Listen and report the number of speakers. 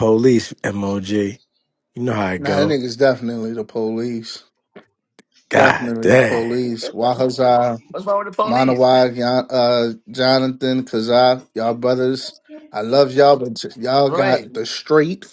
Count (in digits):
3